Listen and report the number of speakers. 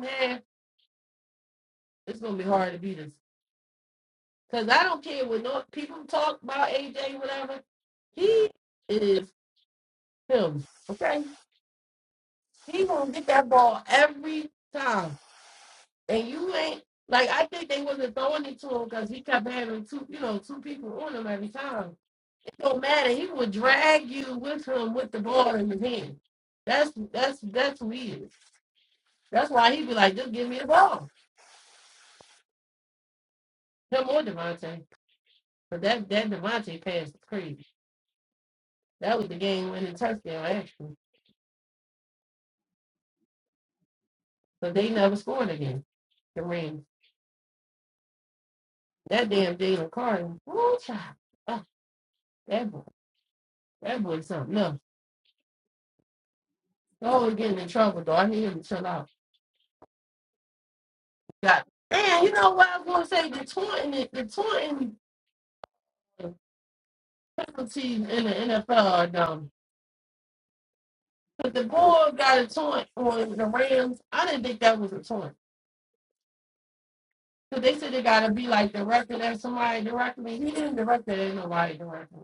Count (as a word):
one